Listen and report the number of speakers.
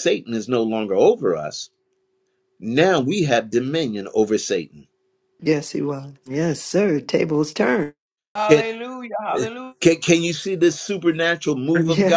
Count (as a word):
three